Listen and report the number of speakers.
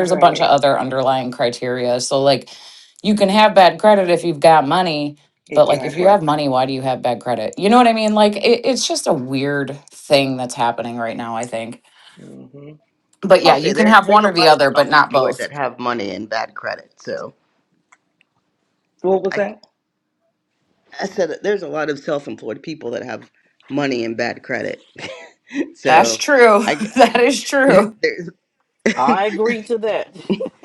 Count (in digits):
4